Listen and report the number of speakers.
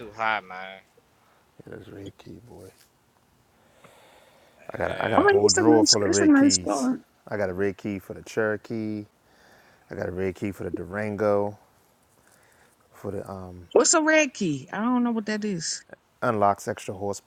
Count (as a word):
three